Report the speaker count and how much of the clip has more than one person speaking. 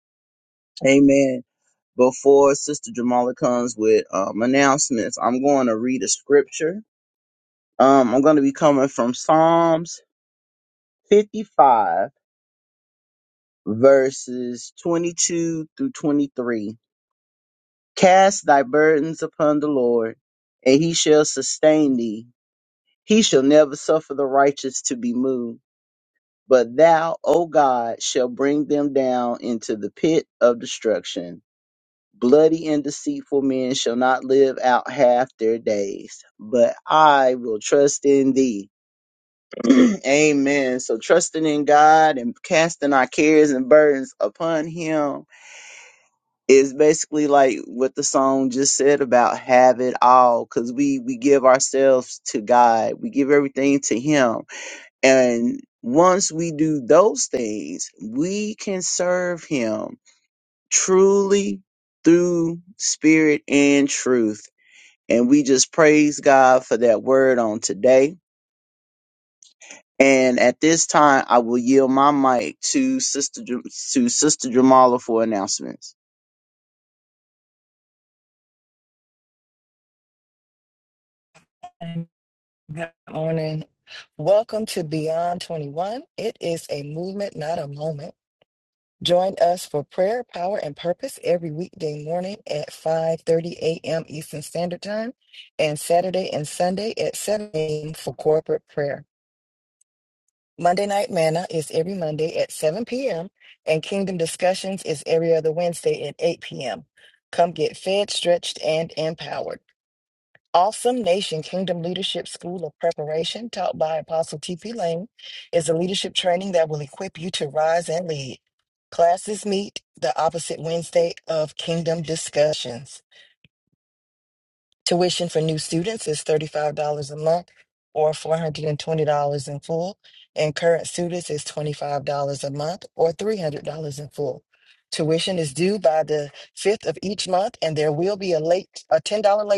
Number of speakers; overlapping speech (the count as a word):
two, no overlap